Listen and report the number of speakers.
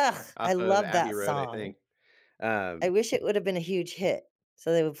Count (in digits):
2